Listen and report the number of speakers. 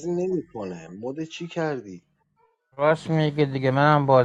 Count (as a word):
two